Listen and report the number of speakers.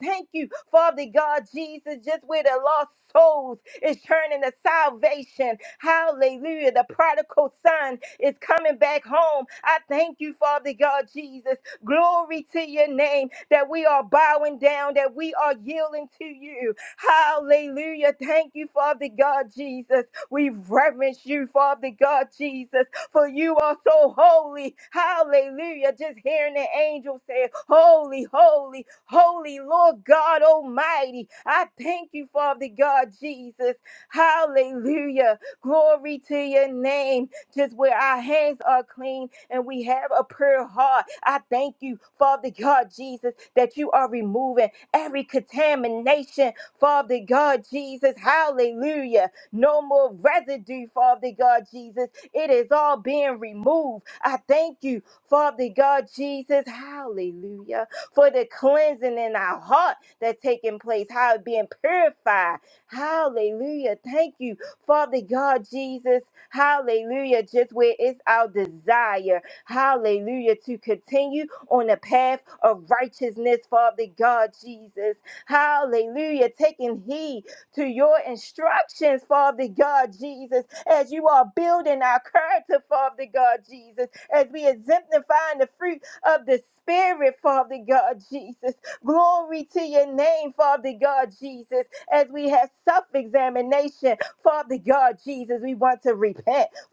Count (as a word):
one